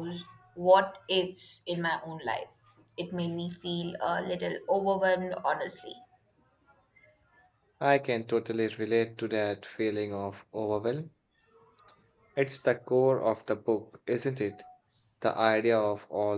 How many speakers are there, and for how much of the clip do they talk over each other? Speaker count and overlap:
2, no overlap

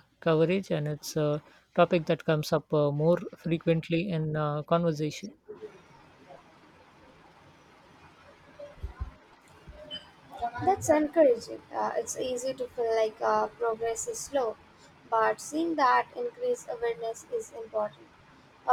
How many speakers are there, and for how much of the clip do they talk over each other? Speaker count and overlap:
2, no overlap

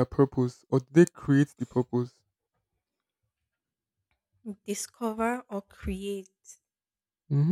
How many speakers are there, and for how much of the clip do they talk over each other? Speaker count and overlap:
2, no overlap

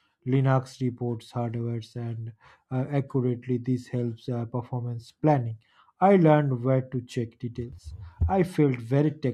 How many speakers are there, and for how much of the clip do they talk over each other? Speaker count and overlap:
1, no overlap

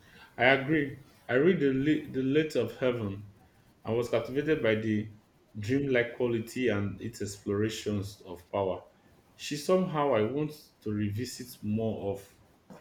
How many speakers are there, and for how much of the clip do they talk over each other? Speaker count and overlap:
1, no overlap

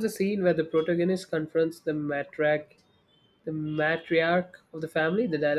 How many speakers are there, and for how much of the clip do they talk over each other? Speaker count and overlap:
1, no overlap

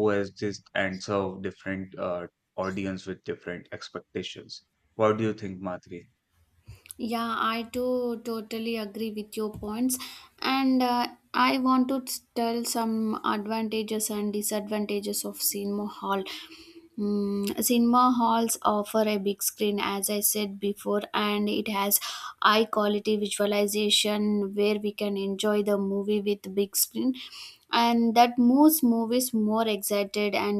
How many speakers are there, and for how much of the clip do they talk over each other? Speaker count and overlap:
2, no overlap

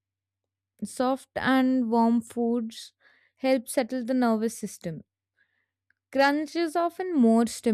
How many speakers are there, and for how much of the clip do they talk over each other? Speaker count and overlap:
1, no overlap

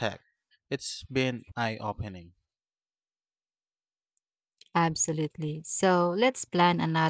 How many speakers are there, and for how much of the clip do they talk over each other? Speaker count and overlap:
2, no overlap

